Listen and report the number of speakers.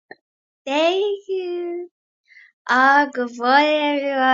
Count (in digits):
1